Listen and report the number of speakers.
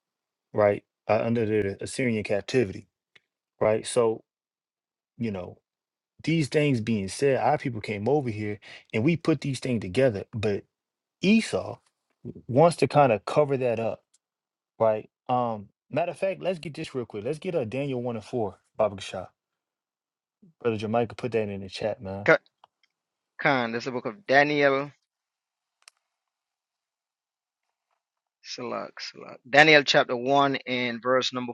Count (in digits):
2